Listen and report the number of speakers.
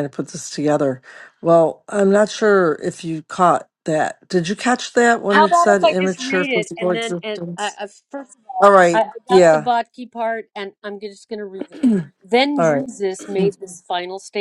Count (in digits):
2